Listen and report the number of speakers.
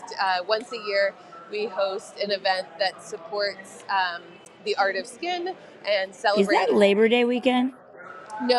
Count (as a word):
two